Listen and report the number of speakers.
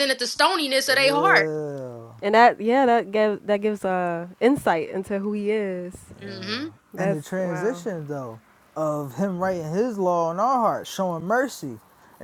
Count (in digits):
3